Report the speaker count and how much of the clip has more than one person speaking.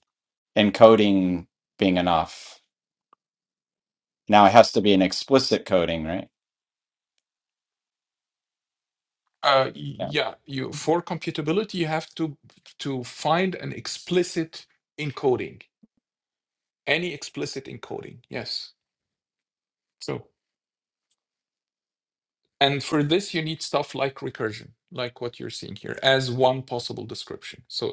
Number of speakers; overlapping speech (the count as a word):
two, under 1%